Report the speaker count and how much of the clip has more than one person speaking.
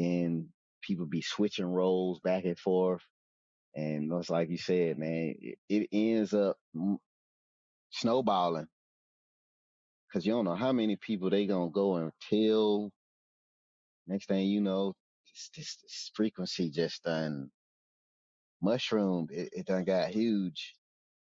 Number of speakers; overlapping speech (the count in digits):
1, no overlap